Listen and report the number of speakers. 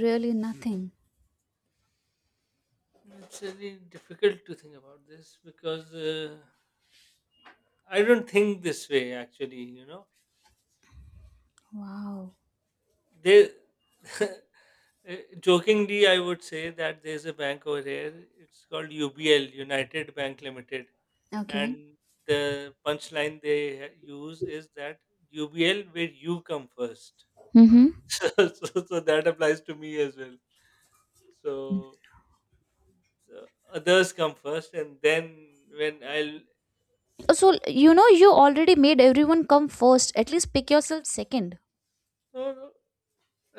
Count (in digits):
2